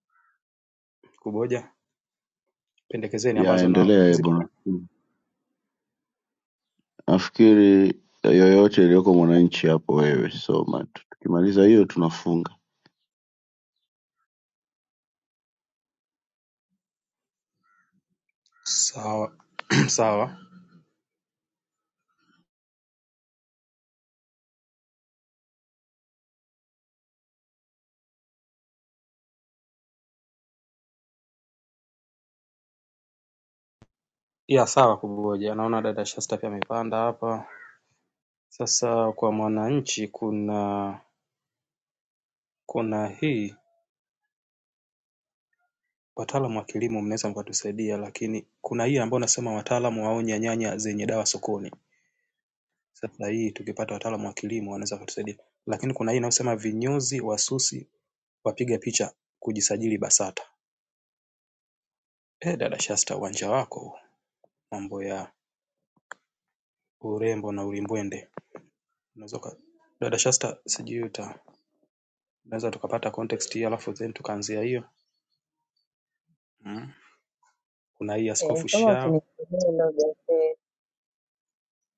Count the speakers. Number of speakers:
three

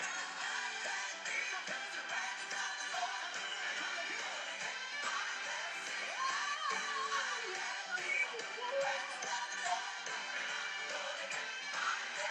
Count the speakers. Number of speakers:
zero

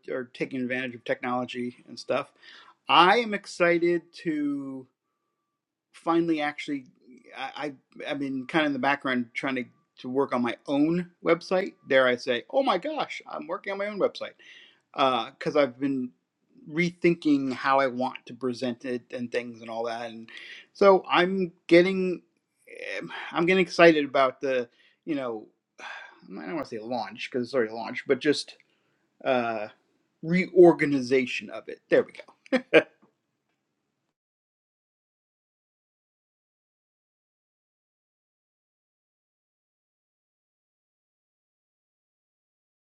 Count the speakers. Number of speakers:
one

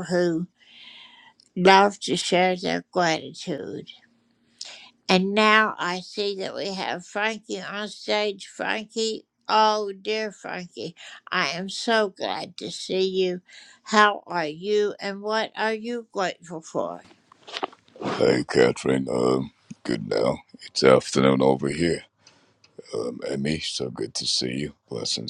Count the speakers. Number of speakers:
two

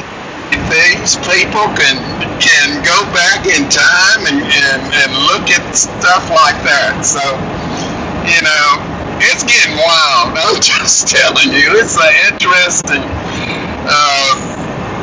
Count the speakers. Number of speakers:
one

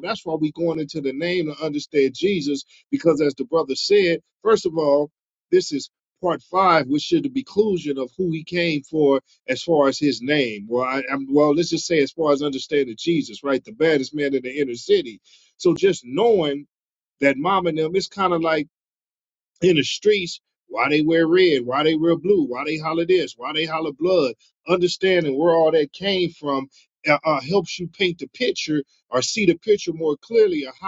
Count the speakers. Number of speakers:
one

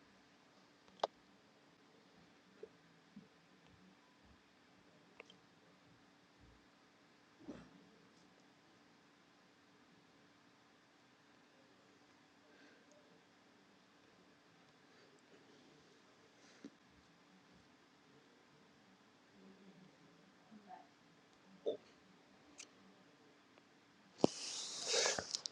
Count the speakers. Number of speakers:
zero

